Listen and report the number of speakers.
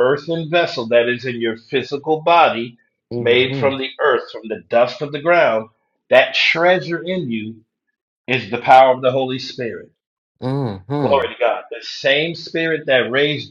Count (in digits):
2